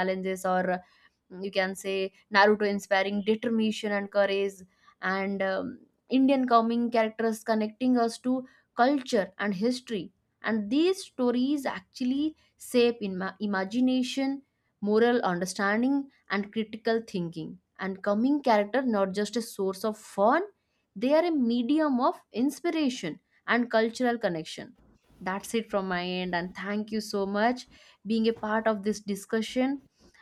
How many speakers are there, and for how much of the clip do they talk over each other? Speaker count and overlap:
1, no overlap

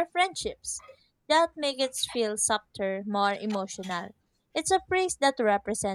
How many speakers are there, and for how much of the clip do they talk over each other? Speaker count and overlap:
1, no overlap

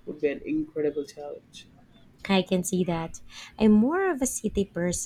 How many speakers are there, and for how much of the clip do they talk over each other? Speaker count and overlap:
2, no overlap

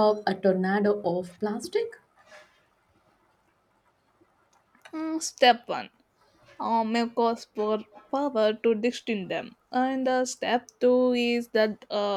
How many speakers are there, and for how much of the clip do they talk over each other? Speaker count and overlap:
2, no overlap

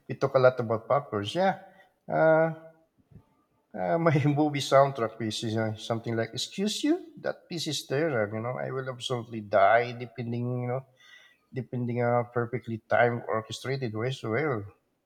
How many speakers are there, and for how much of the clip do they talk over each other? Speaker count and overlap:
1, no overlap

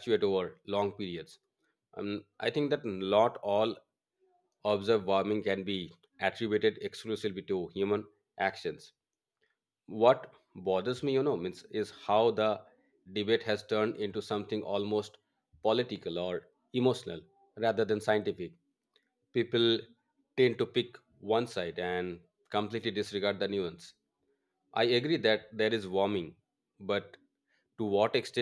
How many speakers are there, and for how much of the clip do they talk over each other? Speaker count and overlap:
1, no overlap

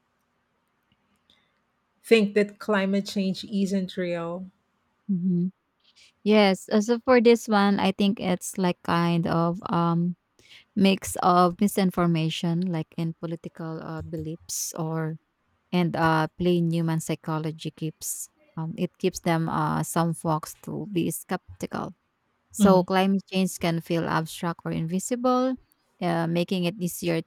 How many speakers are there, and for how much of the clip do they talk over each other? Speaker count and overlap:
2, about 1%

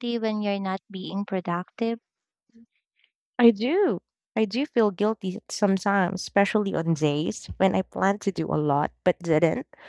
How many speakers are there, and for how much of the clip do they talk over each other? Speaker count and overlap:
2, no overlap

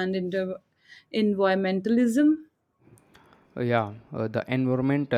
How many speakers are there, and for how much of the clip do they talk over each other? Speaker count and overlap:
2, no overlap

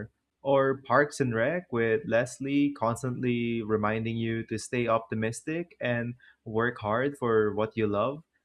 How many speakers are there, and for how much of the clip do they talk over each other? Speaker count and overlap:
1, no overlap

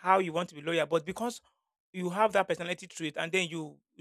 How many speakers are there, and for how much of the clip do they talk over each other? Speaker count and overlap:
1, no overlap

